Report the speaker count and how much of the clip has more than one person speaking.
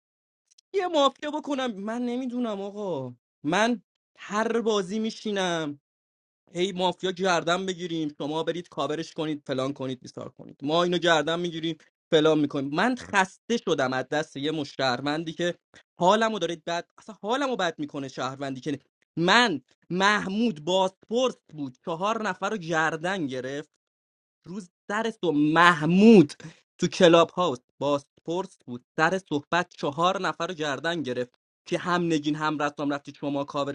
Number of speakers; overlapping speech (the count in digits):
1, no overlap